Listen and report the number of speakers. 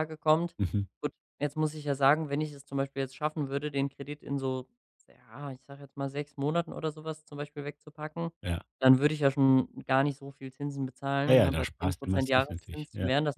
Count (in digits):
2